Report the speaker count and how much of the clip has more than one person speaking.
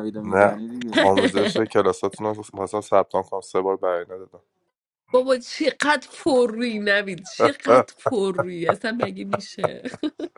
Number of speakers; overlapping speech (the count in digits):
3, about 6%